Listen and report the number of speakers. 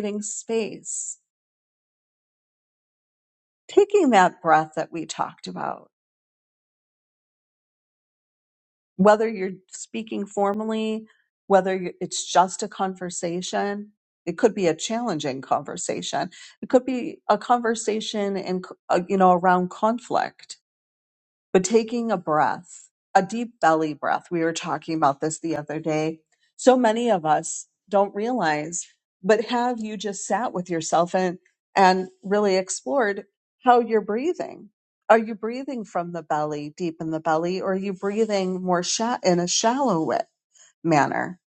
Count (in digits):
1